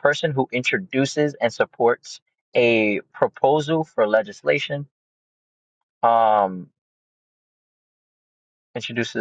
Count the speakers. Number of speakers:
one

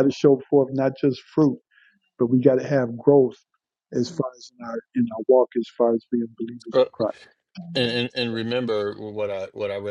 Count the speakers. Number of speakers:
two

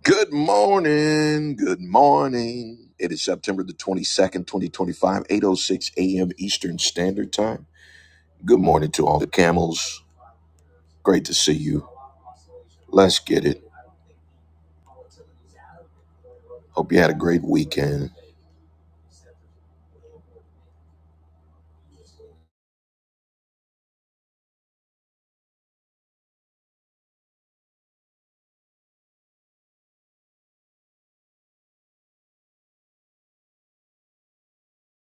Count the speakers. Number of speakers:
one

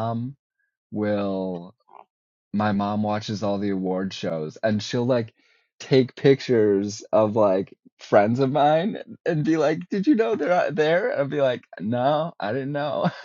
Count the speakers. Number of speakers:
one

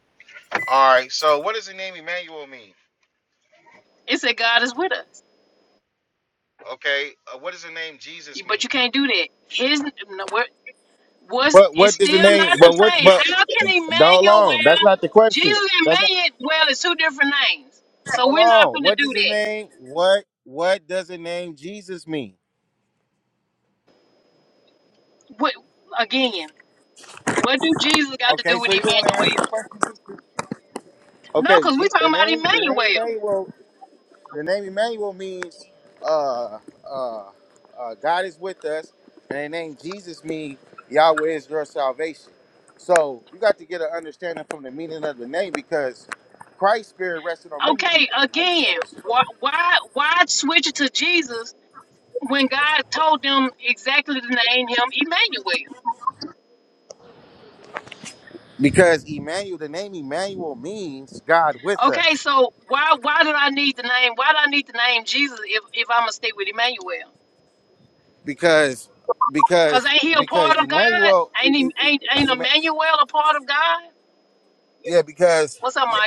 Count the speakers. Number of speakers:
two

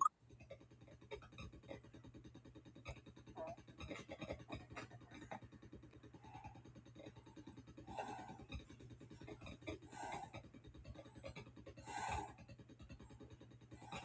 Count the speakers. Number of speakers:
zero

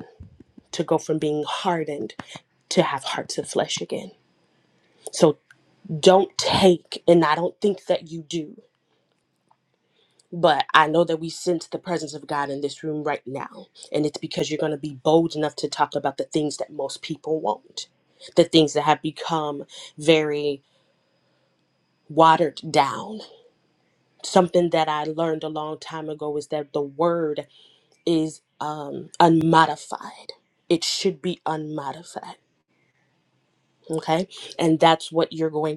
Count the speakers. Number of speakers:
one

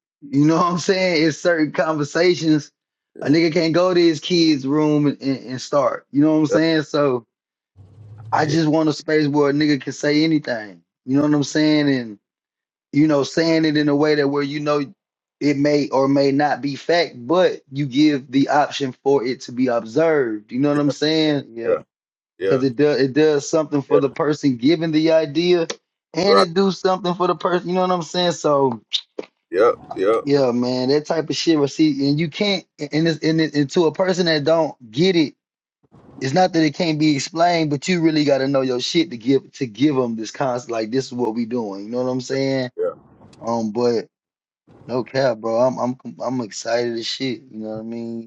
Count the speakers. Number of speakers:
two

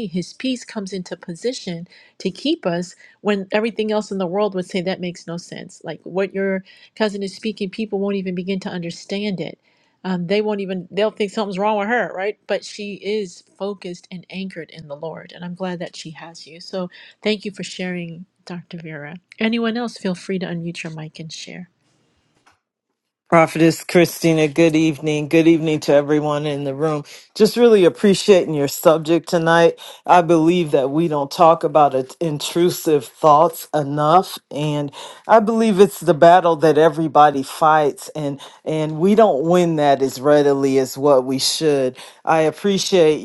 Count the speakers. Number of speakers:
two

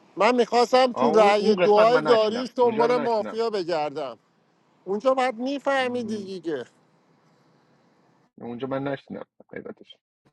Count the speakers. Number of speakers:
two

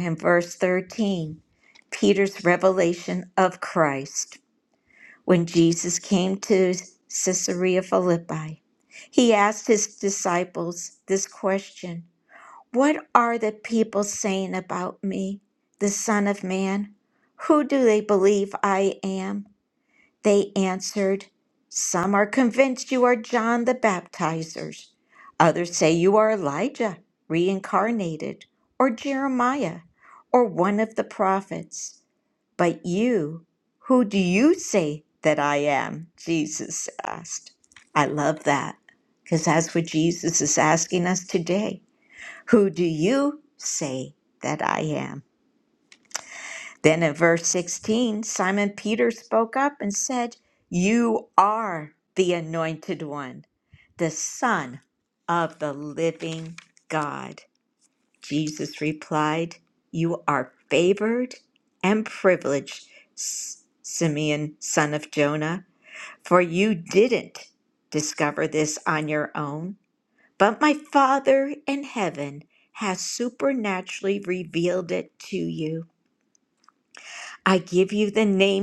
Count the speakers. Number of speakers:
one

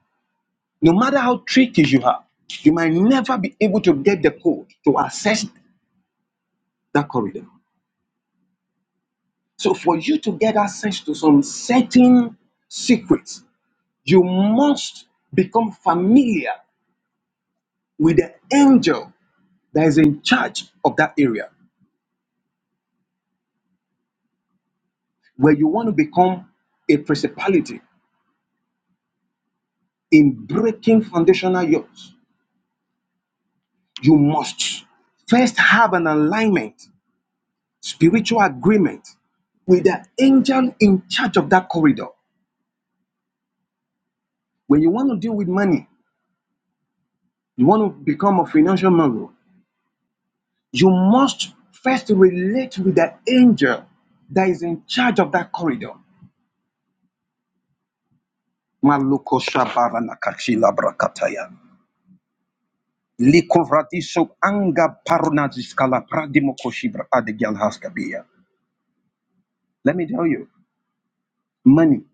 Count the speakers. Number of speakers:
one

